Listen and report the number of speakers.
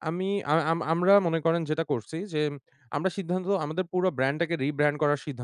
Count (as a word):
one